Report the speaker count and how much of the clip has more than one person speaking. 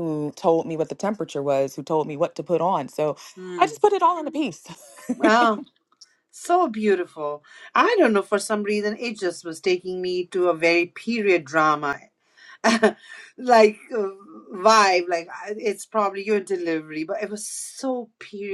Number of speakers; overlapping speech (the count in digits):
2, about 1%